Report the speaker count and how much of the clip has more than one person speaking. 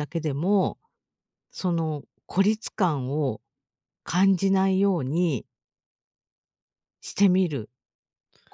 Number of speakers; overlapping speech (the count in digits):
1, no overlap